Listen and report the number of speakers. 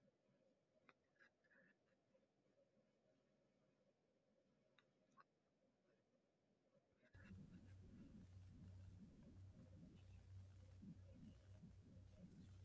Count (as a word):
zero